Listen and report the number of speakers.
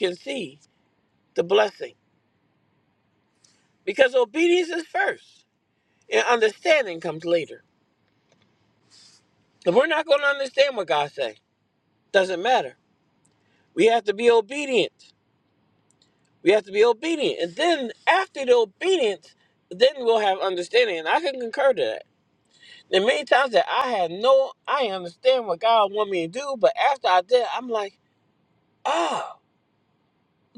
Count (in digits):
1